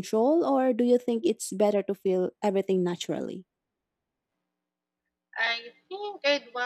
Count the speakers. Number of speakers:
2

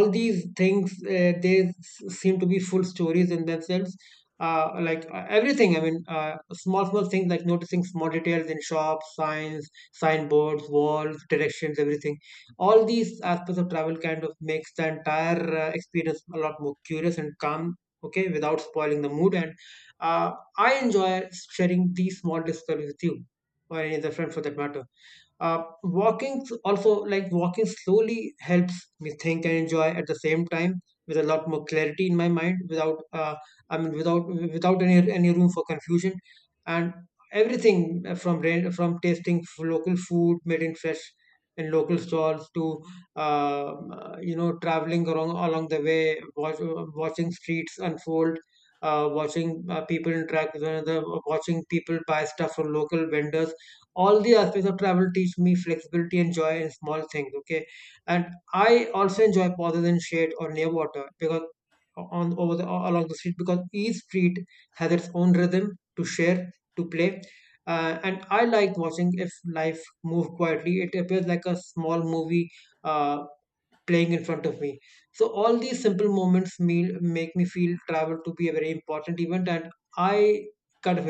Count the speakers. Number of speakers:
1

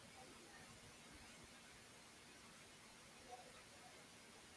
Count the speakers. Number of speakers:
0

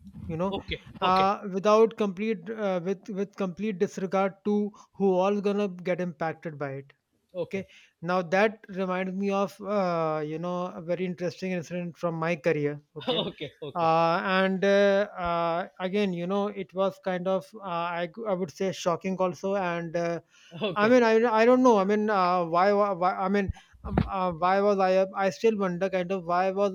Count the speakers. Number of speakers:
2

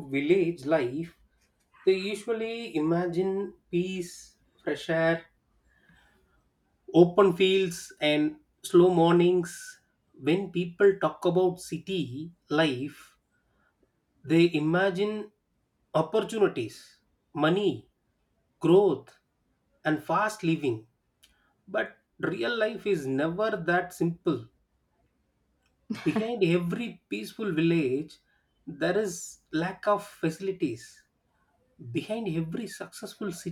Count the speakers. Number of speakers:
1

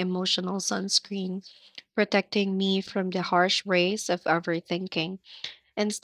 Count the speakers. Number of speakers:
1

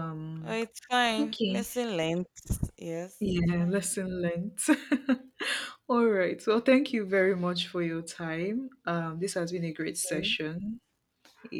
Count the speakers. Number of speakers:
2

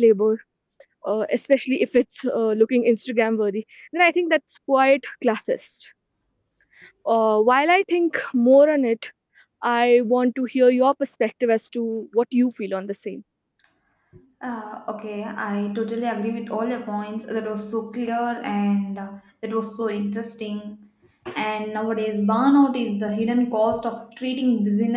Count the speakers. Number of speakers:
2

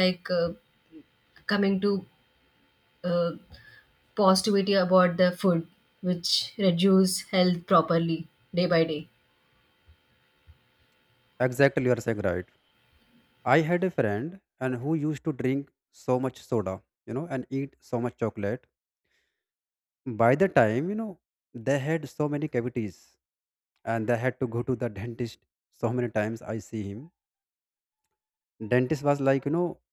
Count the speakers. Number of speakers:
2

